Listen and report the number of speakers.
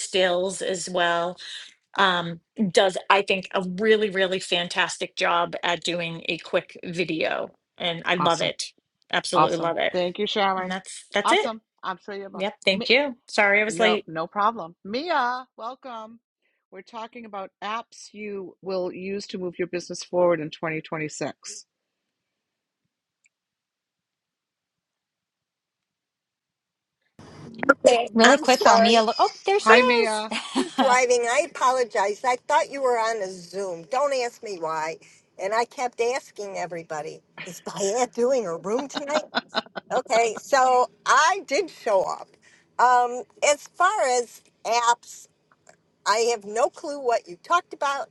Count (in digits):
4